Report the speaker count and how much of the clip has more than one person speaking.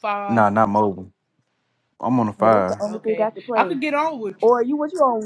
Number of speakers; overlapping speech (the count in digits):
3, about 29%